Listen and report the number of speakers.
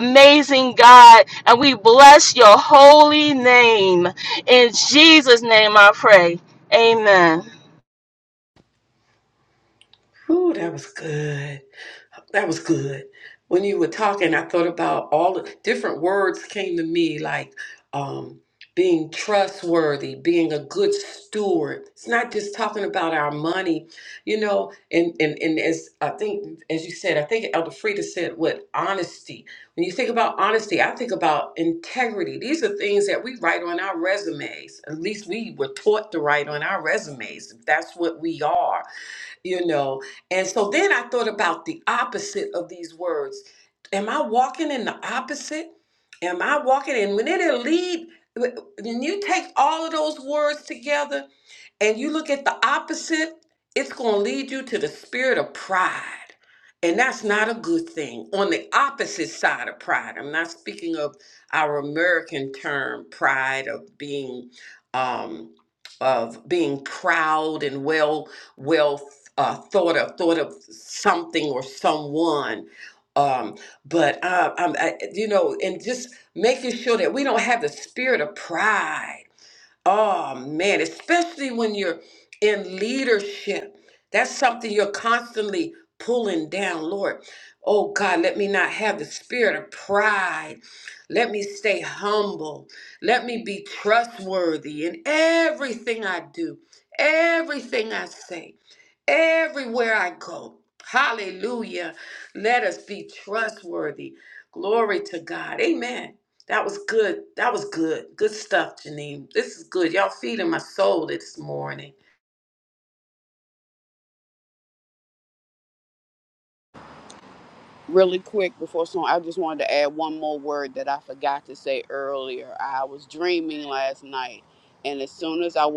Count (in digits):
3